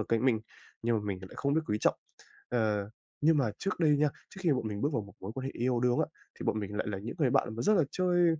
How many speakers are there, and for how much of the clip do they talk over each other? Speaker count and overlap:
1, no overlap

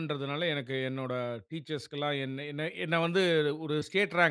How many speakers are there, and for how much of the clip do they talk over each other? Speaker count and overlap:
1, no overlap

